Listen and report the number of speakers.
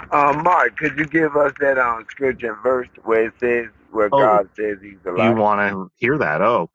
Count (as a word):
two